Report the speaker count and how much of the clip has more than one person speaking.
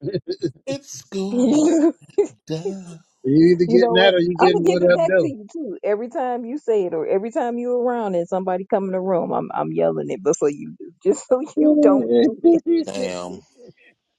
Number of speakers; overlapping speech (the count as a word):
three, about 11%